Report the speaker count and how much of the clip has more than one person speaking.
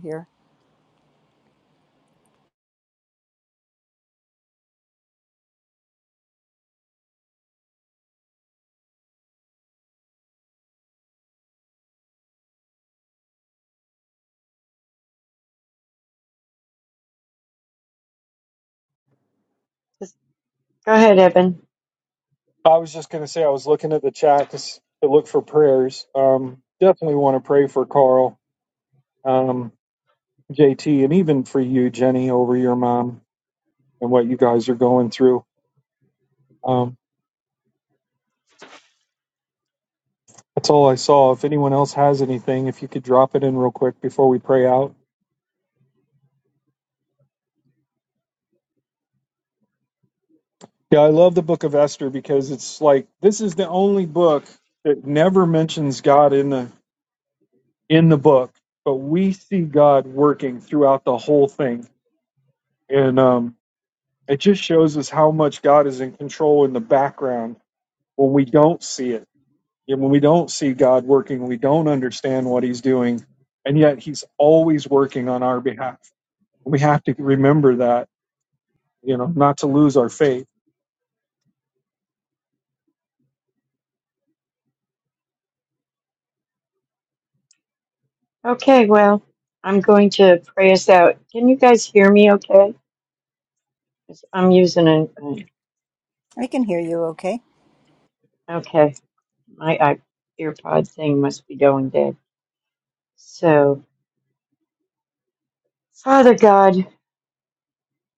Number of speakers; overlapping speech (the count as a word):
three, no overlap